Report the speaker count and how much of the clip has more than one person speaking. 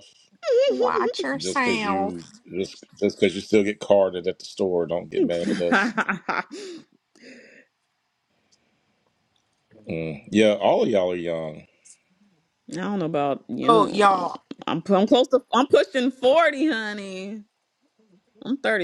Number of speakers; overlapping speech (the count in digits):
3, about 6%